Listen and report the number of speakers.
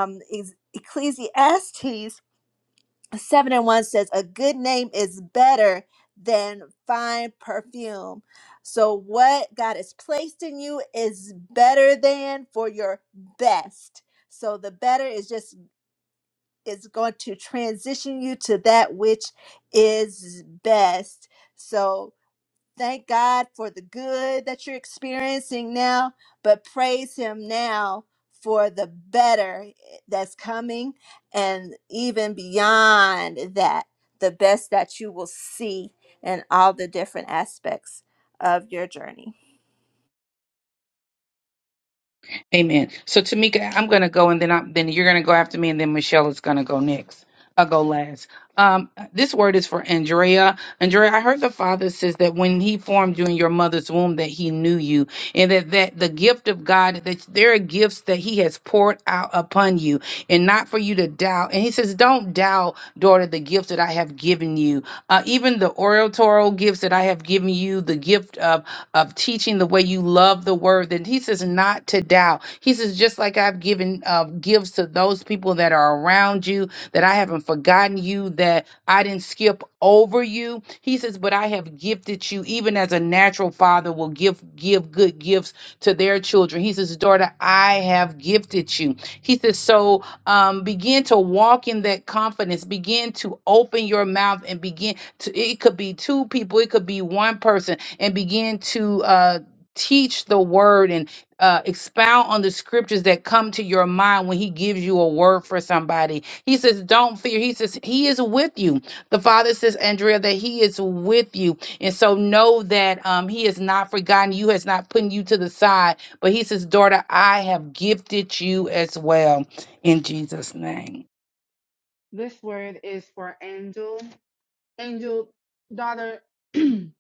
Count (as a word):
three